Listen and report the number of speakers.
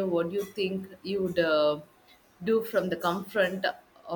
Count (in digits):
1